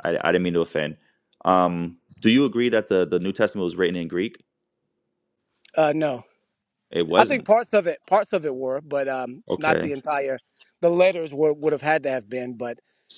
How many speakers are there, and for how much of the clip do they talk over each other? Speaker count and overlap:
two, about 5%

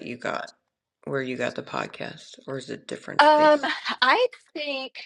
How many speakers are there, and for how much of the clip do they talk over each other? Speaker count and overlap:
two, about 9%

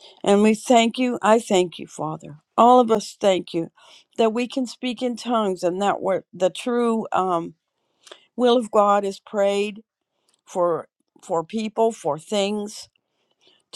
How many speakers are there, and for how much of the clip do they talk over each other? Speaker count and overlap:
one, no overlap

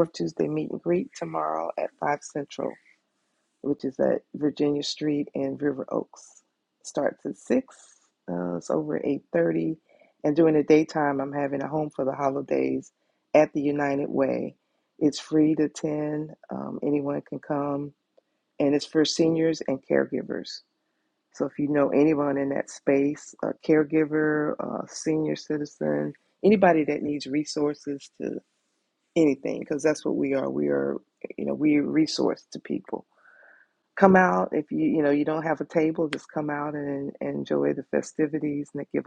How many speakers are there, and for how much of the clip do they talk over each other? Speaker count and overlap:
one, no overlap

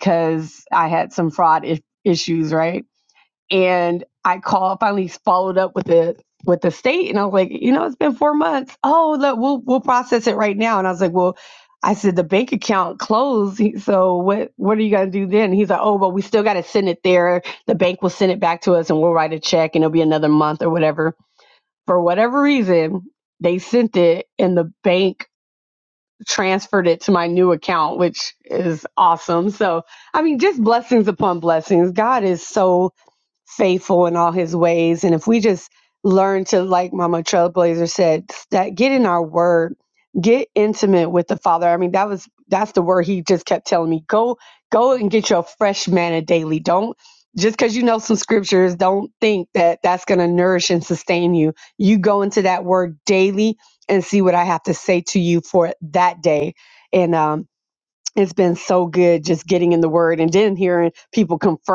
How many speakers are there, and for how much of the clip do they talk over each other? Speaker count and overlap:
one, no overlap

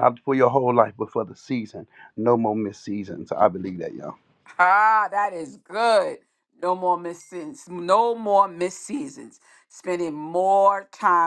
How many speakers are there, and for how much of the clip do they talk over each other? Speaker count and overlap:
two, no overlap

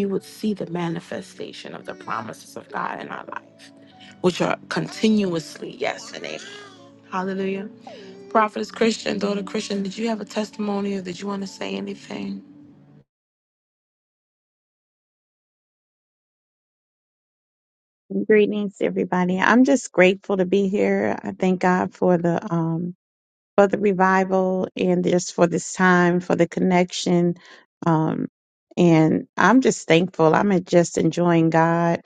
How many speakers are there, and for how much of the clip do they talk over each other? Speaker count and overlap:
two, no overlap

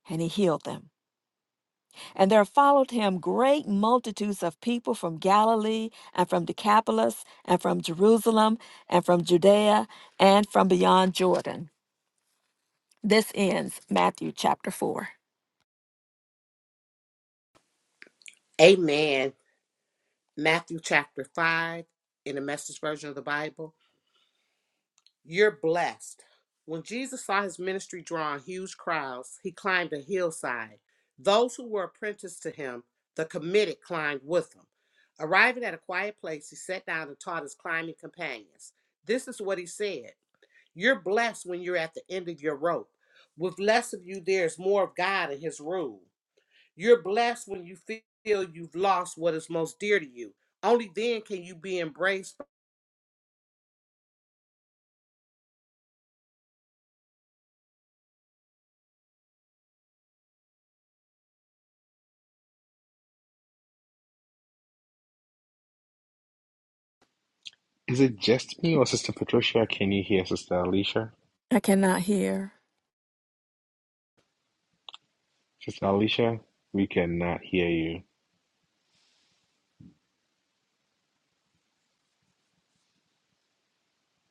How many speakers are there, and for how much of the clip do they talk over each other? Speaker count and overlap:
three, no overlap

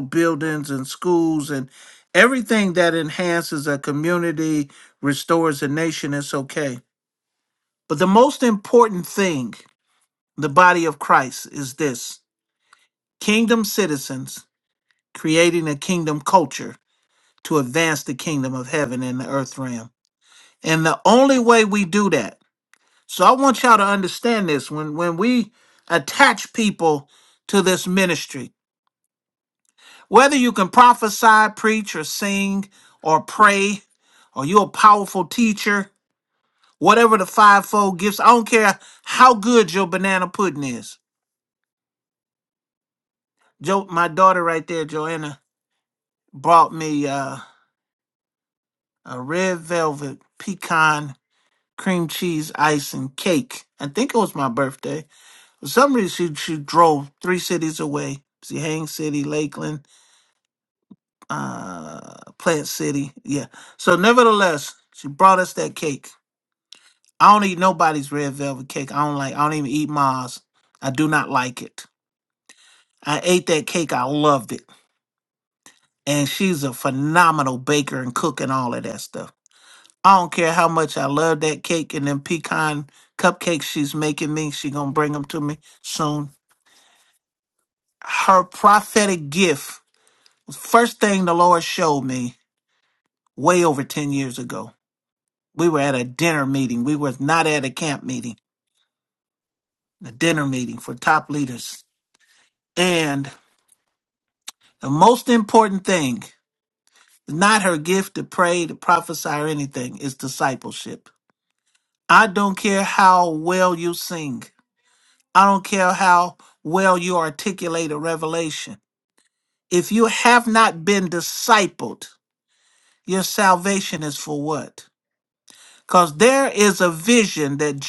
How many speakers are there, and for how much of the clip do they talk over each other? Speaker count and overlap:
one, no overlap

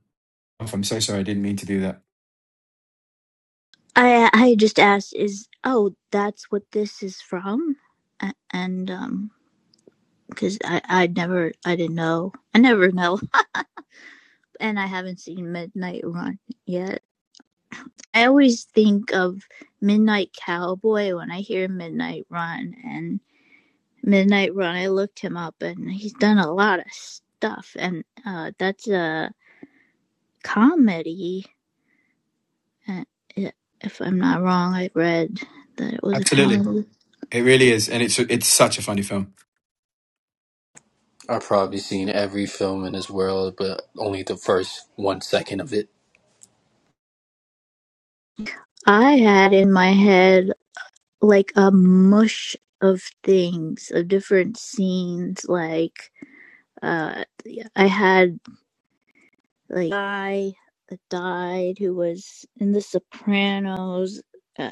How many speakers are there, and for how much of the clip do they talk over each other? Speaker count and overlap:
three, about 1%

